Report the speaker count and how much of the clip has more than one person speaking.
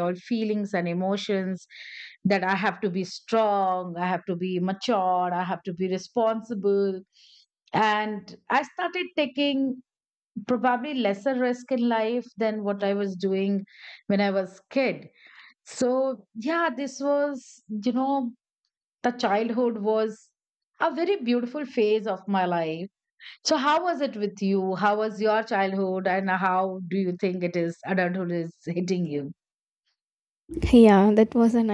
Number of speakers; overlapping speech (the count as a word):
two, no overlap